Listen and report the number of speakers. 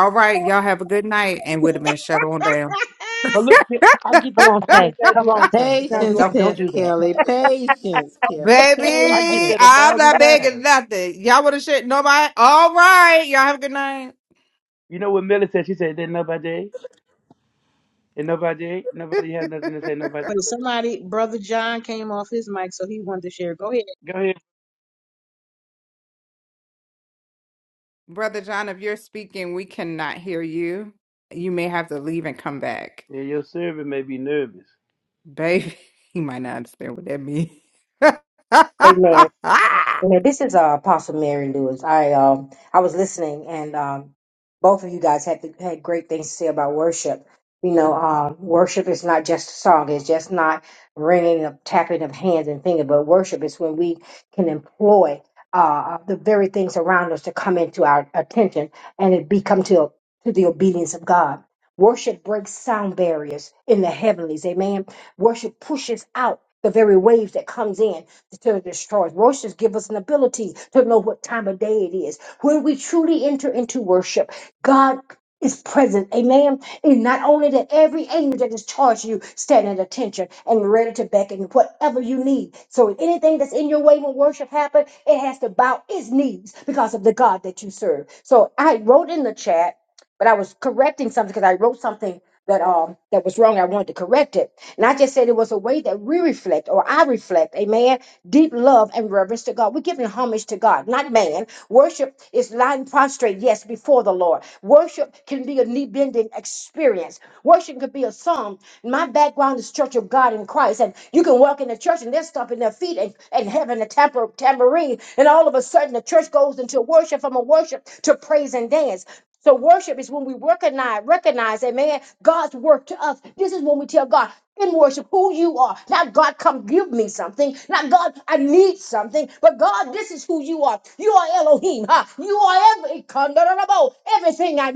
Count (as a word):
five